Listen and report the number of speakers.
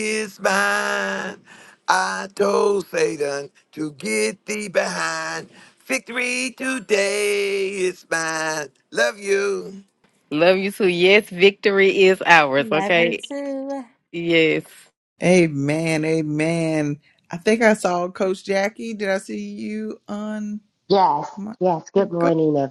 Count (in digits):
5